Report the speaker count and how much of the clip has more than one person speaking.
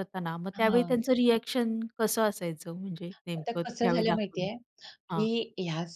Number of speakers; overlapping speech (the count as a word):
two, about 28%